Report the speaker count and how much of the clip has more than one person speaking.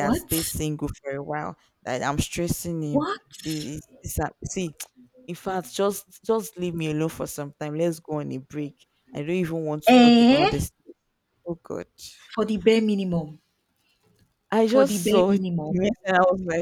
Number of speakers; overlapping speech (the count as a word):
two, about 15%